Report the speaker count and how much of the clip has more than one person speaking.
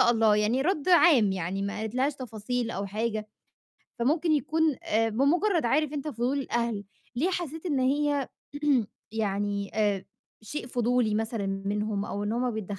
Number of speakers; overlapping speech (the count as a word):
one, no overlap